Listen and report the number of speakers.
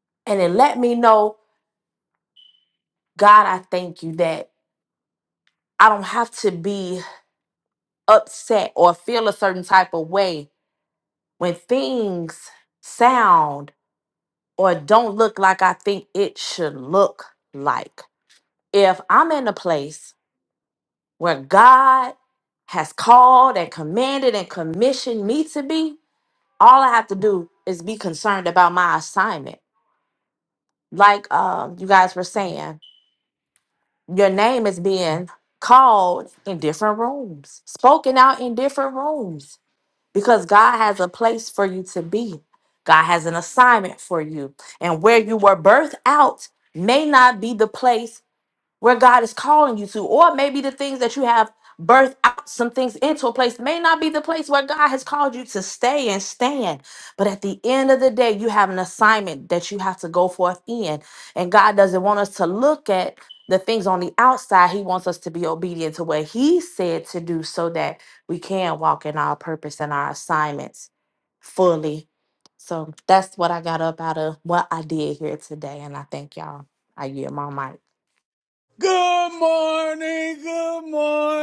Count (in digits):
2